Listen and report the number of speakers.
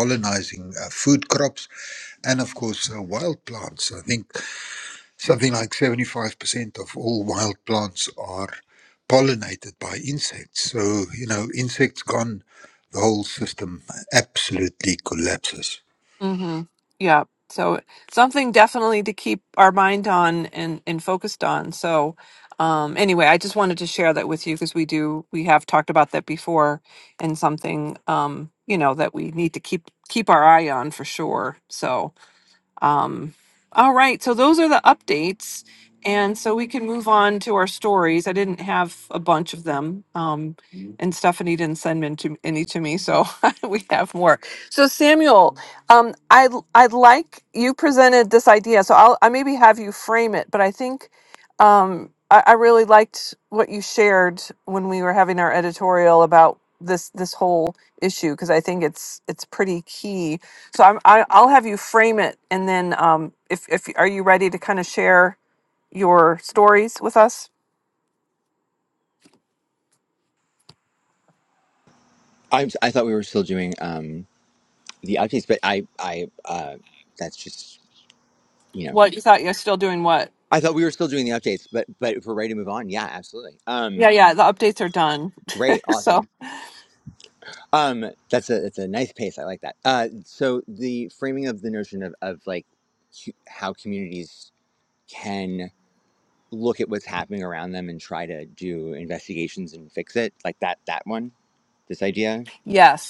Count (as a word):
three